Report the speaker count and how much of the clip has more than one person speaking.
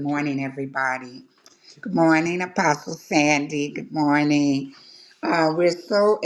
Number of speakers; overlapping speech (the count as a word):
one, no overlap